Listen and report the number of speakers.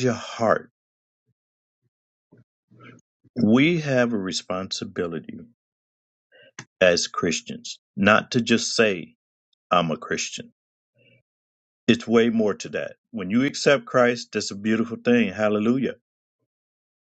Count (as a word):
one